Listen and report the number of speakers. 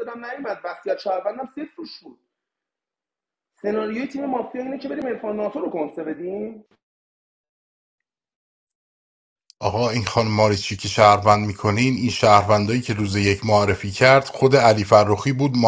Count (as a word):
two